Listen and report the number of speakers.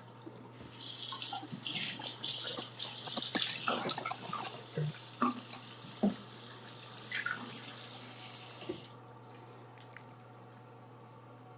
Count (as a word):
zero